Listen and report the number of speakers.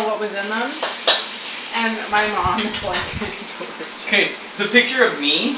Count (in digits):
2